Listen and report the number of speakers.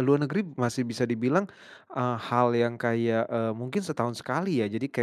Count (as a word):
one